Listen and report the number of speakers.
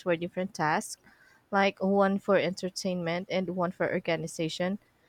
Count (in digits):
1